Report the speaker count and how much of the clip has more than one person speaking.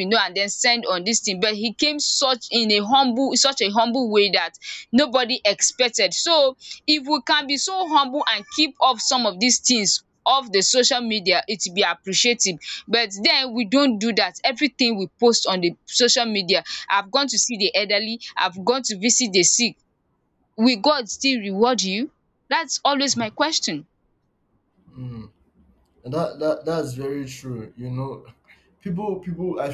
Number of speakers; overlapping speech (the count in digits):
2, no overlap